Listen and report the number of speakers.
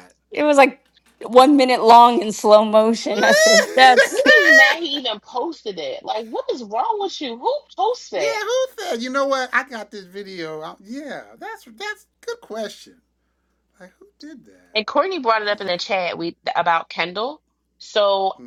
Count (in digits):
3